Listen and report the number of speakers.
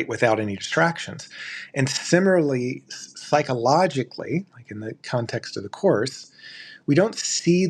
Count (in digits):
1